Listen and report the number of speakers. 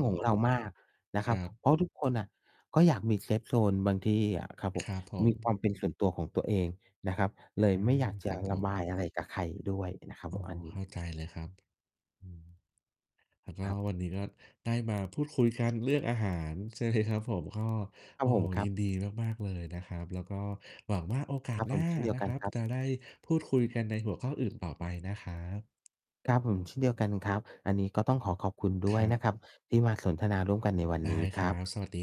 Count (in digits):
2